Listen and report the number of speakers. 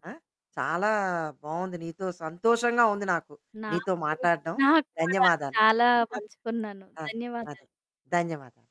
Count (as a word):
two